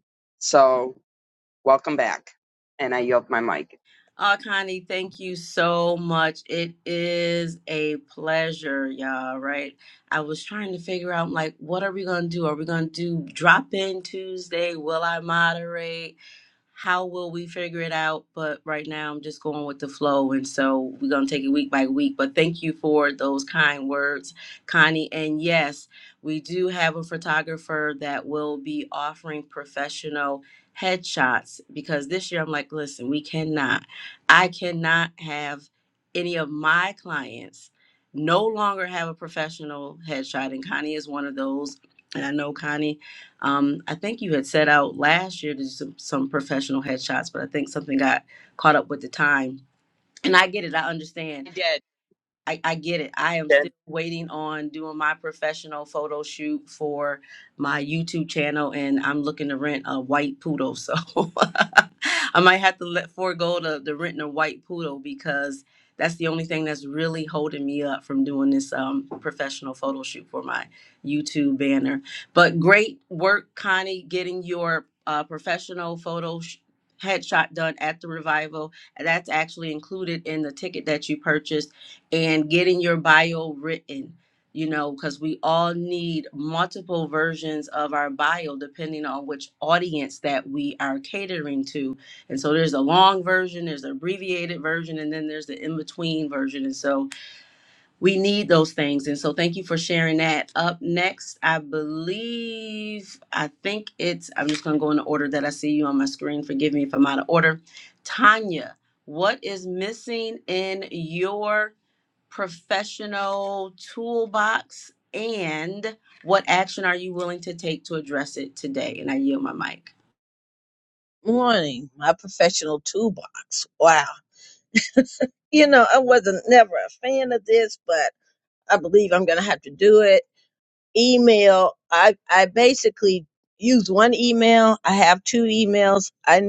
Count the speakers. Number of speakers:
3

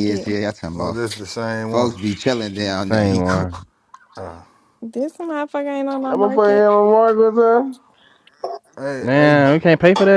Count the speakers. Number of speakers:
5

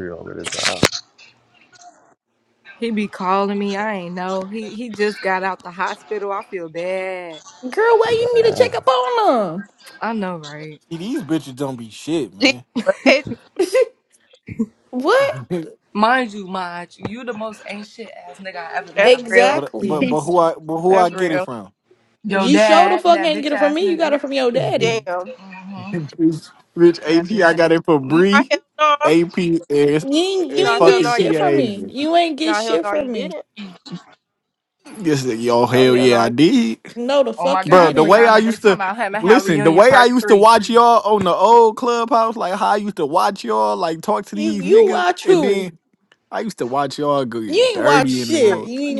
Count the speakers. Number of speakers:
5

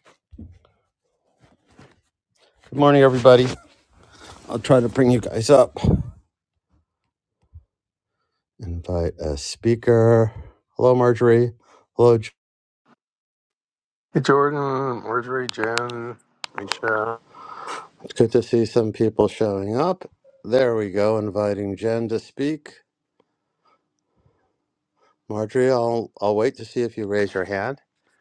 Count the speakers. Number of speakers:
2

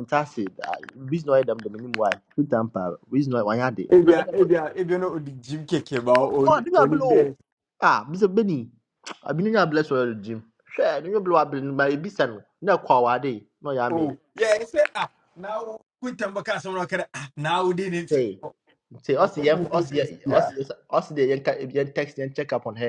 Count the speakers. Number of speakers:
2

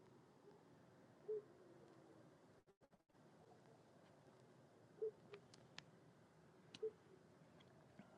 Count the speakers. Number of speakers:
0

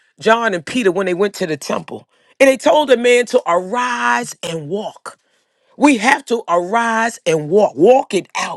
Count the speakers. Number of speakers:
1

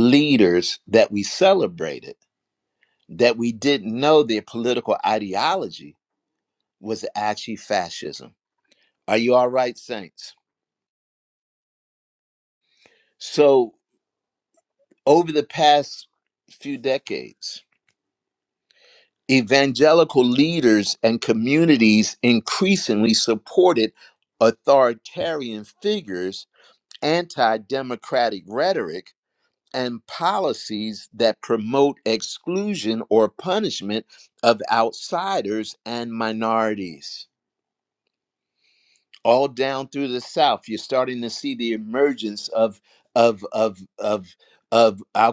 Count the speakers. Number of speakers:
1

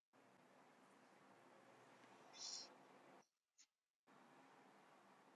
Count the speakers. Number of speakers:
0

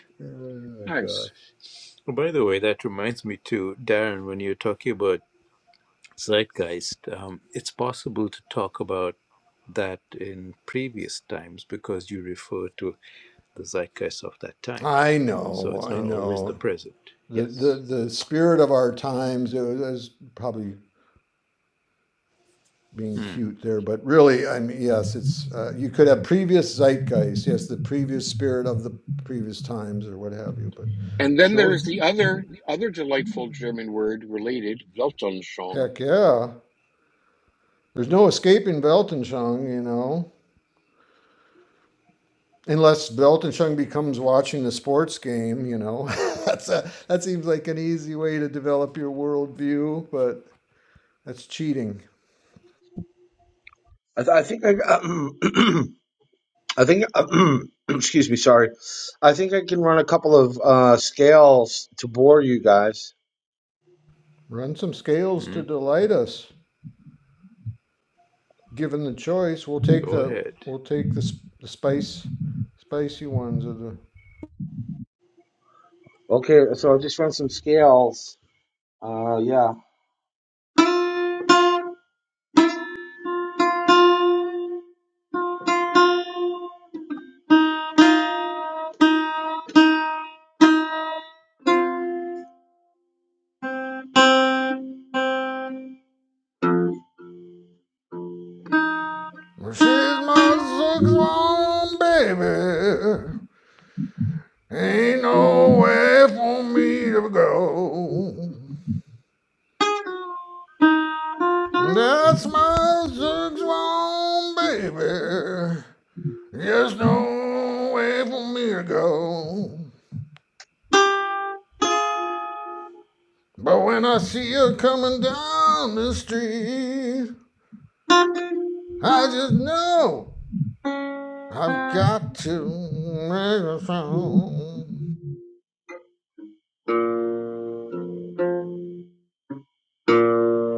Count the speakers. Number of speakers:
4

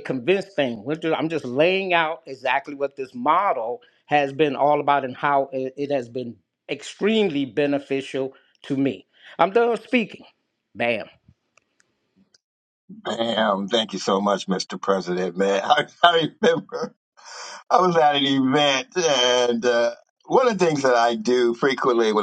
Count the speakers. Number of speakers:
2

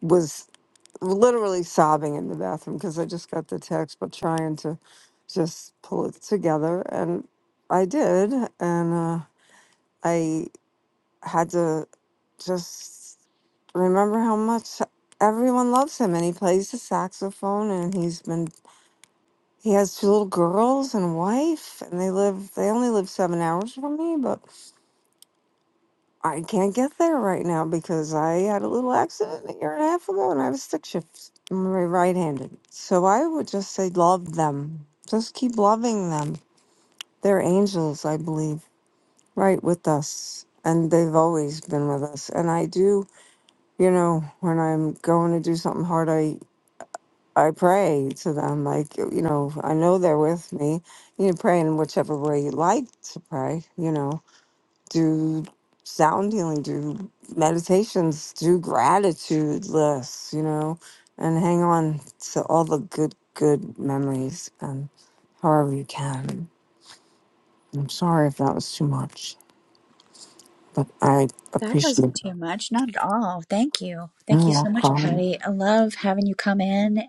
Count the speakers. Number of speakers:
2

